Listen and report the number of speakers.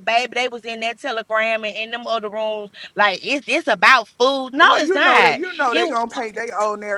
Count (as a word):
two